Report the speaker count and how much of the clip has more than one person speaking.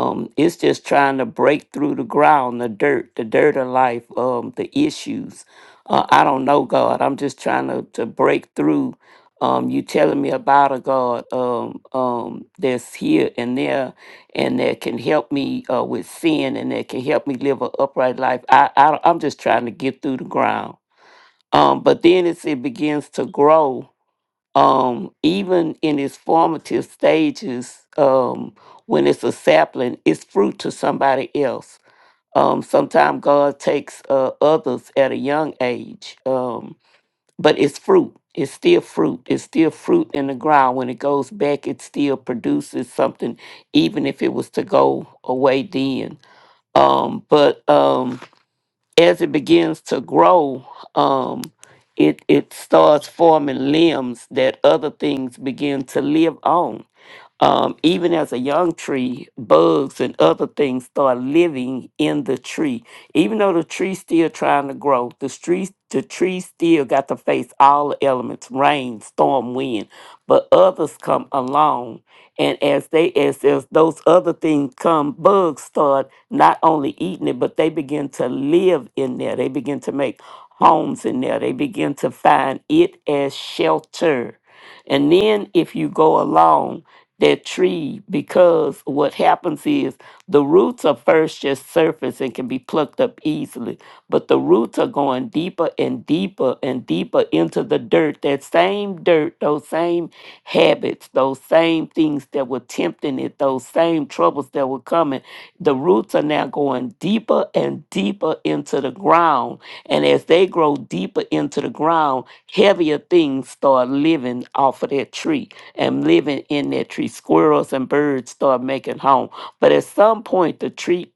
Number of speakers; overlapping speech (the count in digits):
1, no overlap